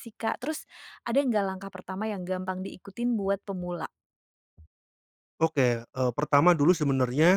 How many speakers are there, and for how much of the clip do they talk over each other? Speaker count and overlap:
two, no overlap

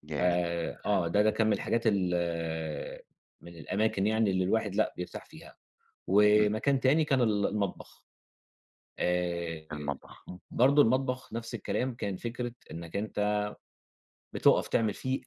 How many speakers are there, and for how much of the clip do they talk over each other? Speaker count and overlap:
two, about 4%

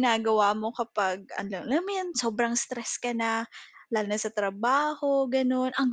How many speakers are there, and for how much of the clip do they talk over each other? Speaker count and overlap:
one, no overlap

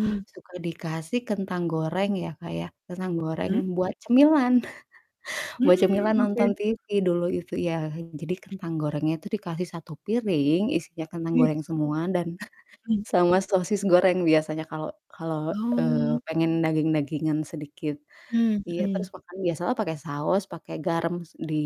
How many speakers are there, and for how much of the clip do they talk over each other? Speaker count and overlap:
two, about 11%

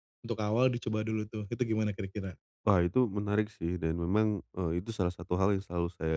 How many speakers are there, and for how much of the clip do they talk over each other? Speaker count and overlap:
two, no overlap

